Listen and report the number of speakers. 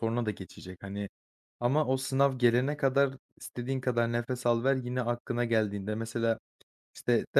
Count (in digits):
1